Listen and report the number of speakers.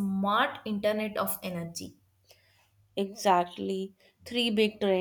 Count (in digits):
2